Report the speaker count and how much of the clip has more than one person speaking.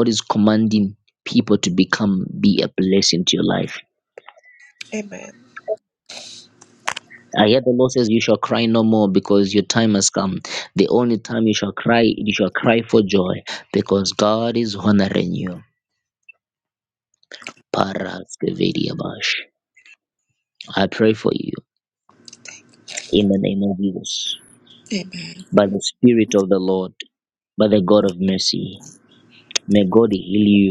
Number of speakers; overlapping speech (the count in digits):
2, no overlap